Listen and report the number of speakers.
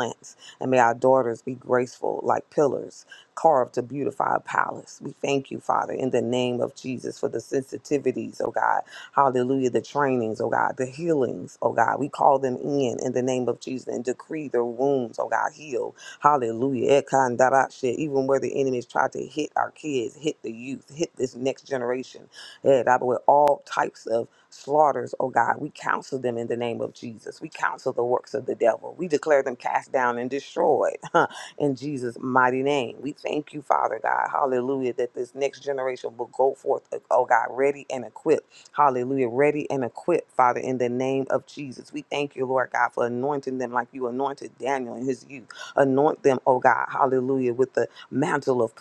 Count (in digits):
1